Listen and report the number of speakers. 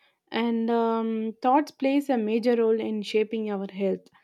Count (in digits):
1